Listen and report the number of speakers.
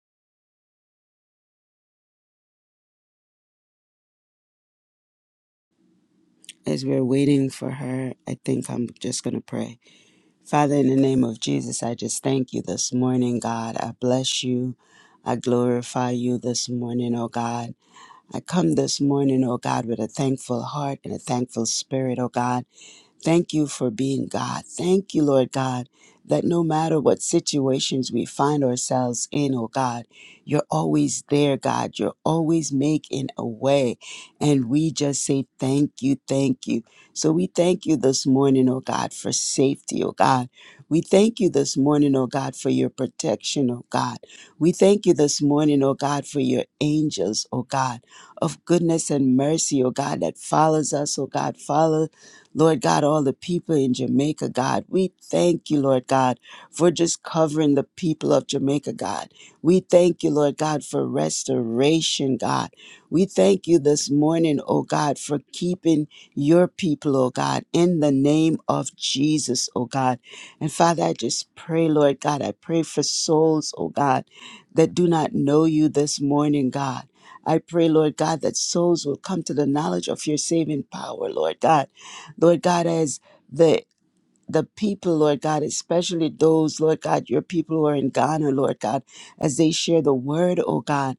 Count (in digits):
1